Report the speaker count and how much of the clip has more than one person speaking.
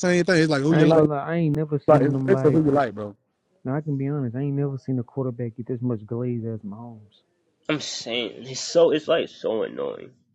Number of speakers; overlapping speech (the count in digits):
3, about 11%